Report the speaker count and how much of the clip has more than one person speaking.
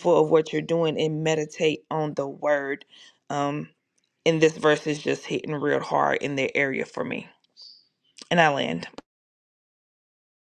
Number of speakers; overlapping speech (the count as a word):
one, no overlap